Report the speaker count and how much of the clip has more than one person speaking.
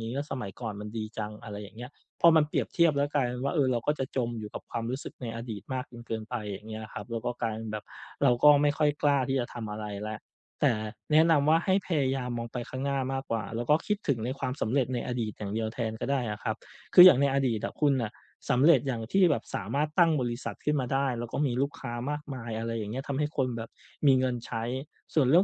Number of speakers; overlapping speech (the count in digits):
1, no overlap